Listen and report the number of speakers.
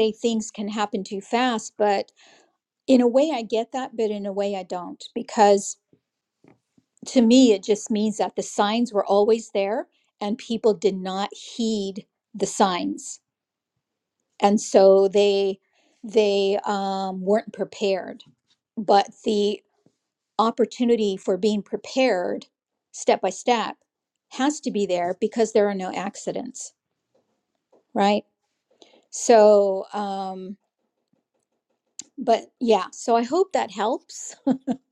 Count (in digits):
1